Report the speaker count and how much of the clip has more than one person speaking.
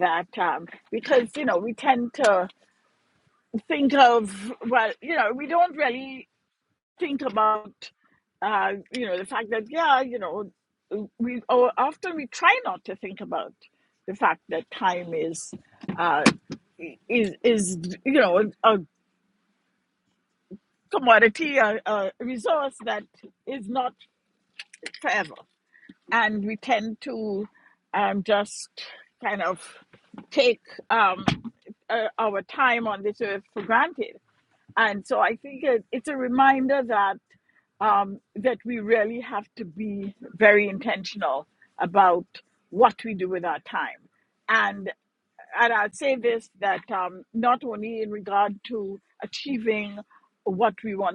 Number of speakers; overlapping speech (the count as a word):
one, no overlap